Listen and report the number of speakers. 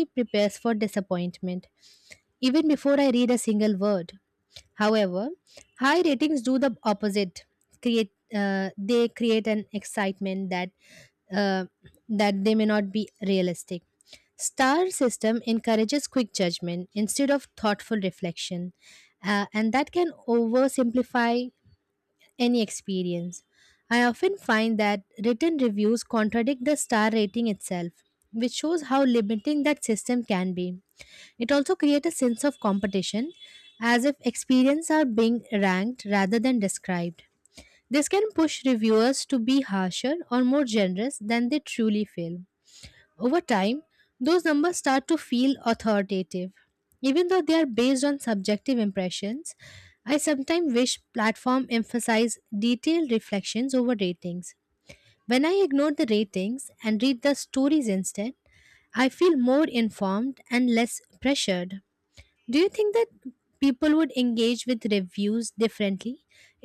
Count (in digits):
1